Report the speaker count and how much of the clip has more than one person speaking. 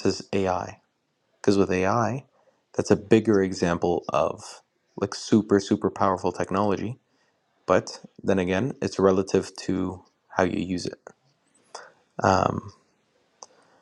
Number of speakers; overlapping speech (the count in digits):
1, no overlap